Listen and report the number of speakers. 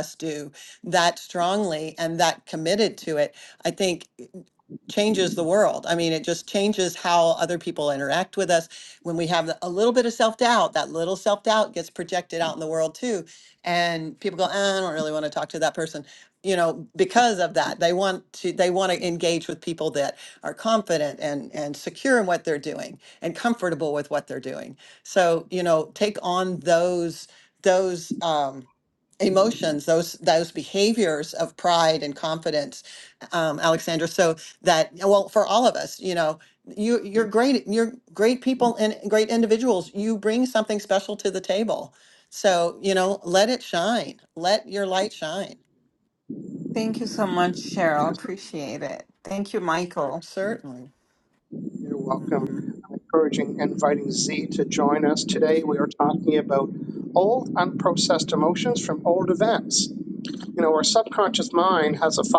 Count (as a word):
three